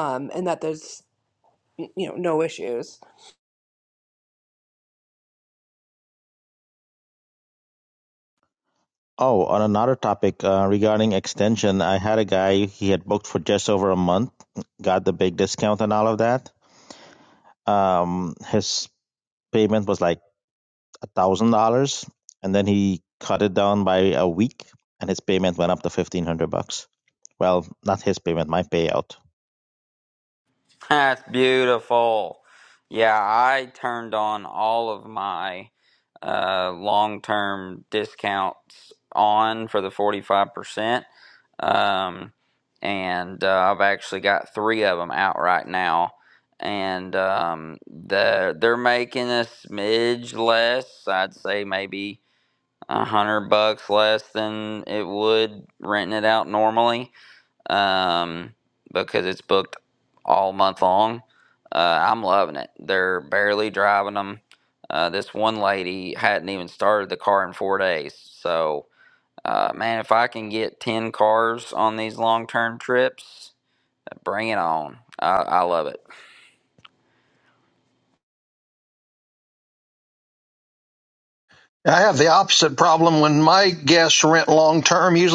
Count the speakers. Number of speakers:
four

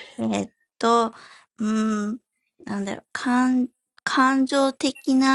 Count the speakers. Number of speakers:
one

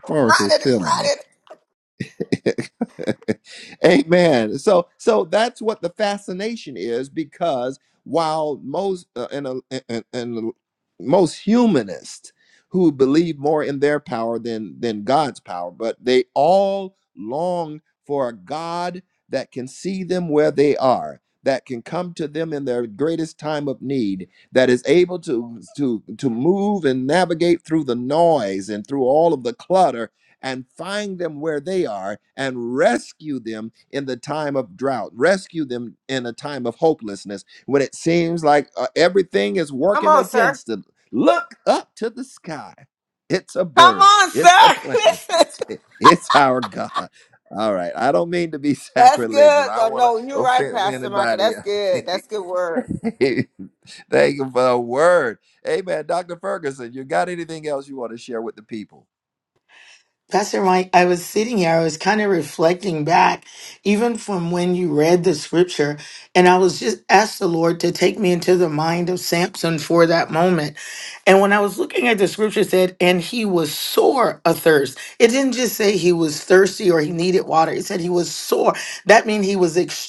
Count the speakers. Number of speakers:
three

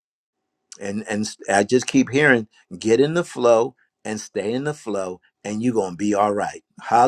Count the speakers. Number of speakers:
one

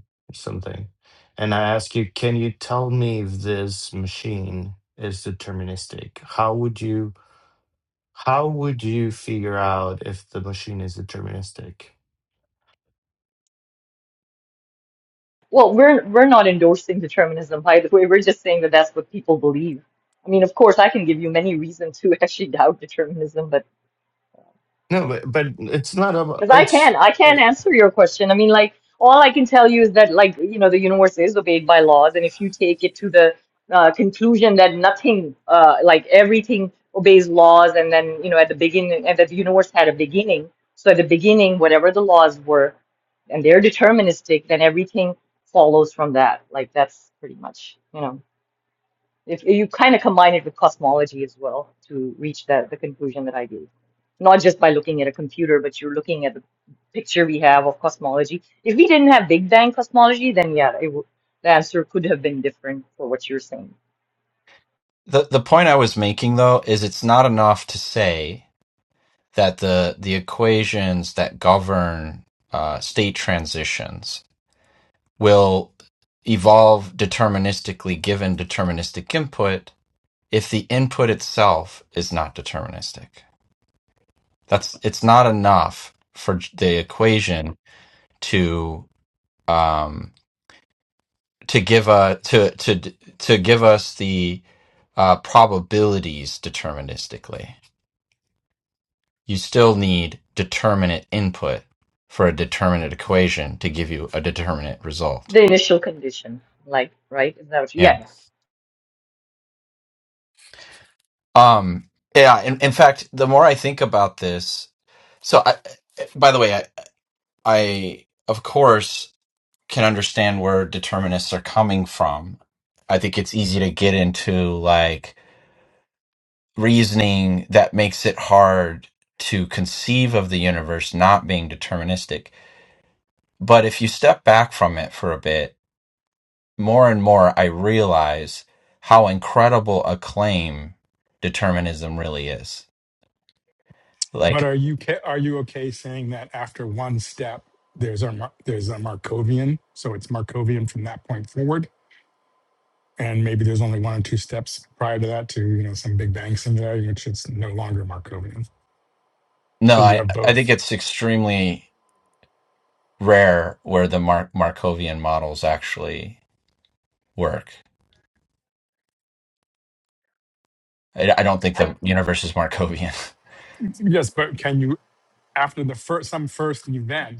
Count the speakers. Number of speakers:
four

